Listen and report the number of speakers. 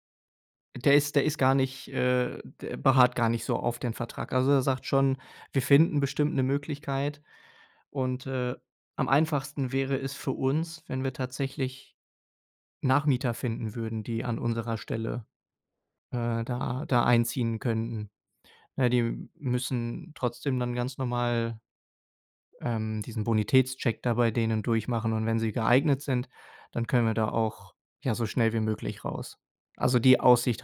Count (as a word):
one